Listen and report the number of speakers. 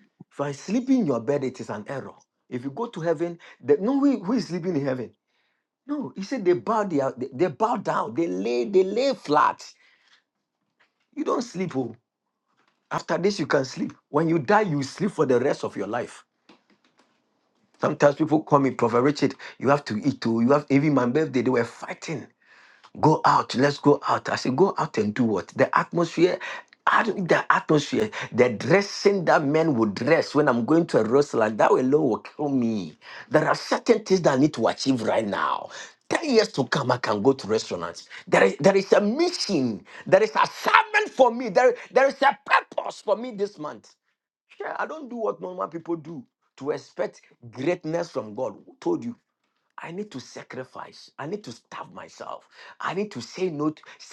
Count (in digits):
1